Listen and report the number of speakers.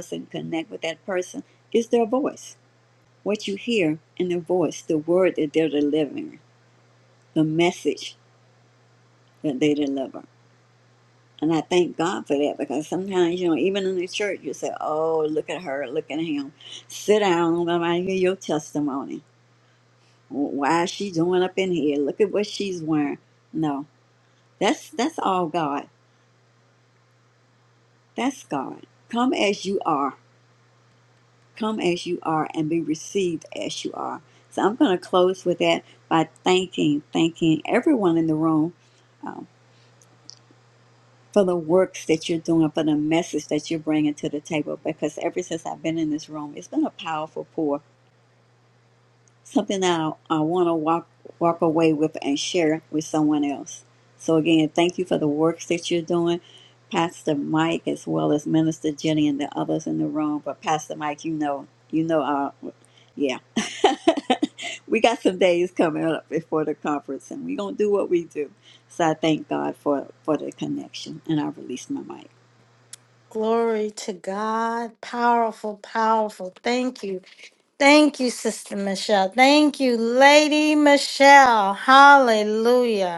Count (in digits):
2